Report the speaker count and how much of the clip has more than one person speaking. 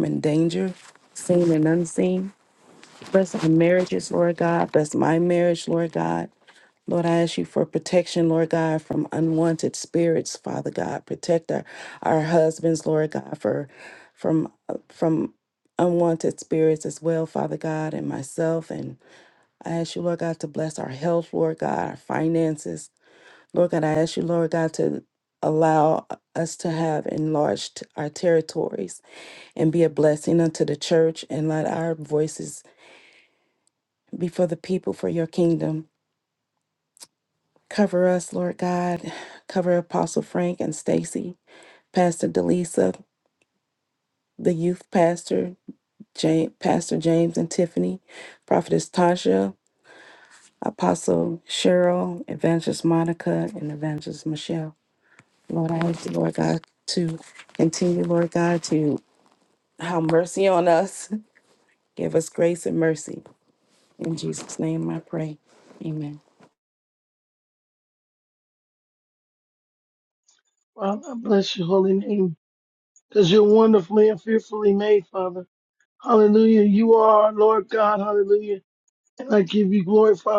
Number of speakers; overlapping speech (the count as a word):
two, no overlap